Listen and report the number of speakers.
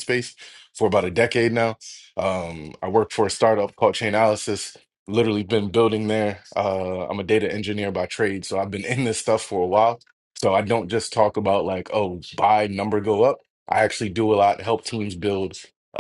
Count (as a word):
one